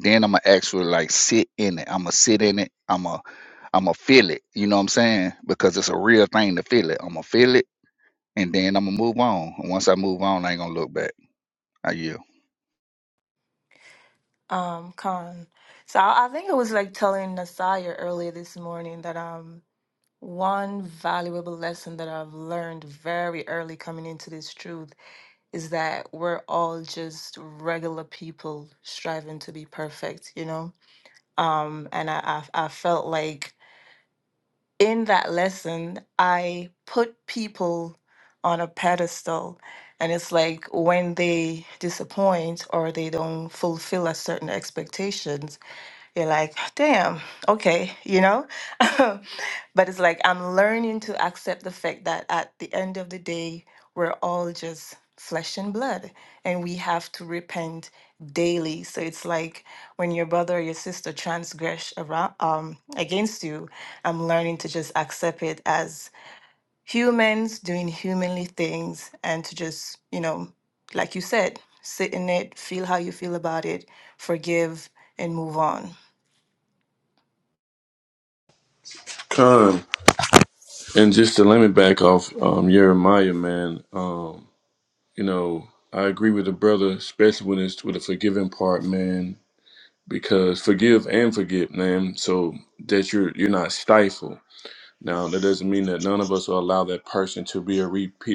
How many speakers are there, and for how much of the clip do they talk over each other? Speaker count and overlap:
3, no overlap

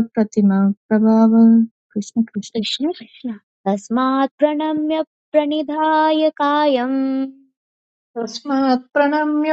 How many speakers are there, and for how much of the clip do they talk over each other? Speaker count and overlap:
3, about 1%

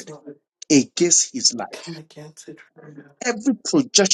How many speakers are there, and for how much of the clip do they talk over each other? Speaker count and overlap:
2, about 12%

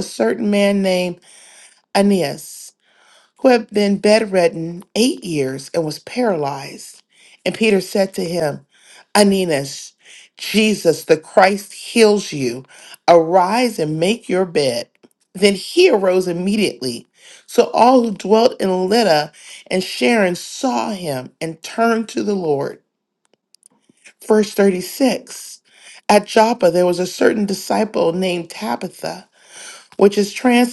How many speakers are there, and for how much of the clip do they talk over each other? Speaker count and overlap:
1, no overlap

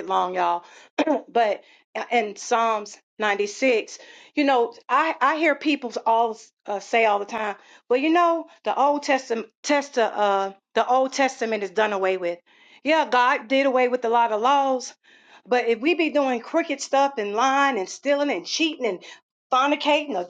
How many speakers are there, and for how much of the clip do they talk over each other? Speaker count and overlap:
1, no overlap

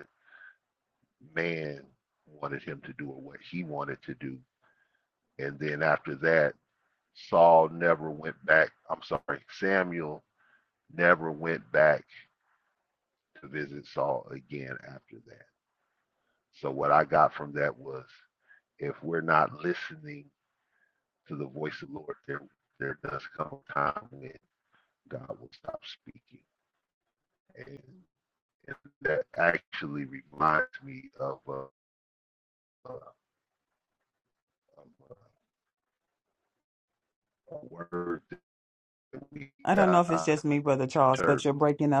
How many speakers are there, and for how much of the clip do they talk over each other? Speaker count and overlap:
2, about 3%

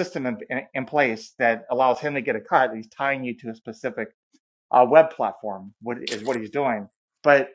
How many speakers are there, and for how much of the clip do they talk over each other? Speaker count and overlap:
1, no overlap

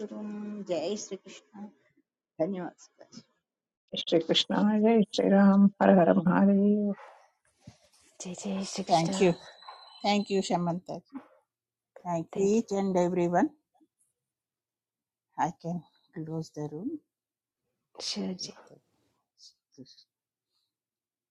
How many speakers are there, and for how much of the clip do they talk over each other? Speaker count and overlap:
4, about 3%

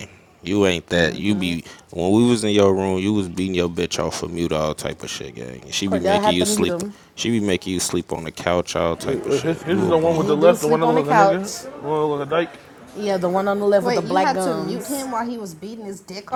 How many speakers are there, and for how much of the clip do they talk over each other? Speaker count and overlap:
4, about 27%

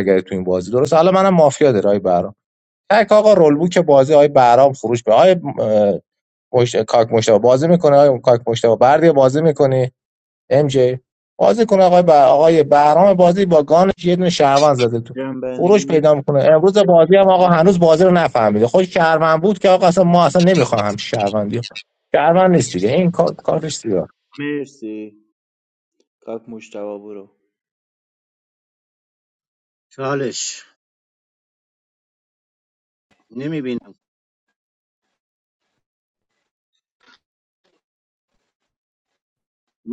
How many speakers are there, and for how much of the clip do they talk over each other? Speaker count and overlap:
3, about 1%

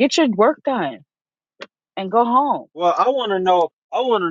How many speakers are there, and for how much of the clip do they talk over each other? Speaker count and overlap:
2, no overlap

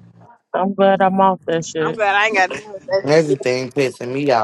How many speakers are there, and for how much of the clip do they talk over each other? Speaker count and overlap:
3, about 12%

